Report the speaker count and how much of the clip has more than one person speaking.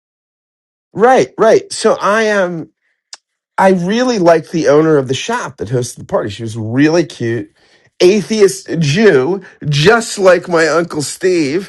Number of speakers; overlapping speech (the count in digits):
1, no overlap